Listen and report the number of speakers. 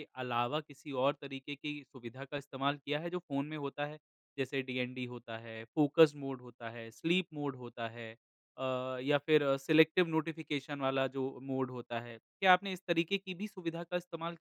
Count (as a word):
one